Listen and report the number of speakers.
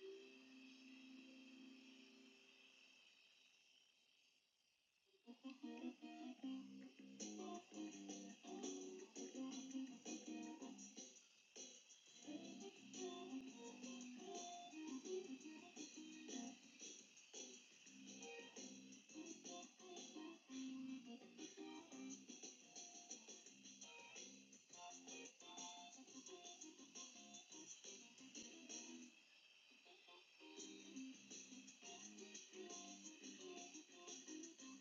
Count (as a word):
zero